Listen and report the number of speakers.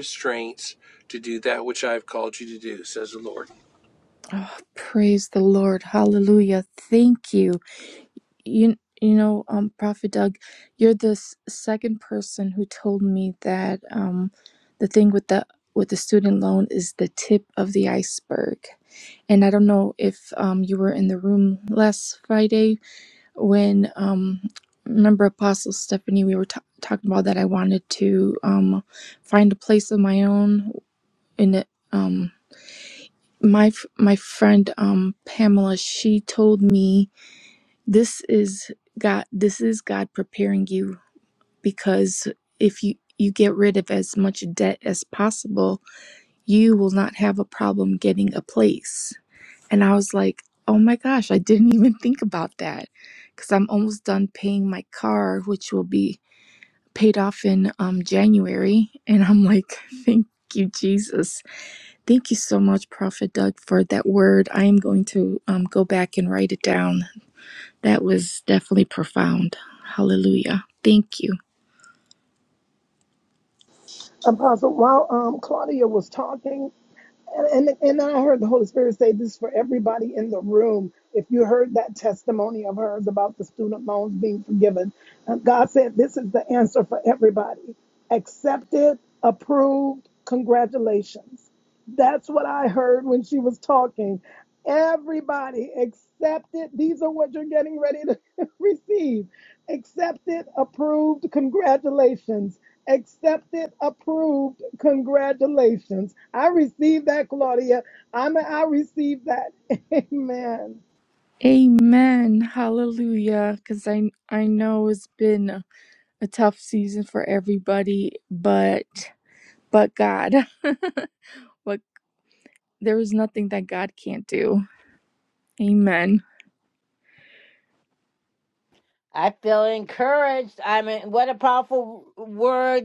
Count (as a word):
four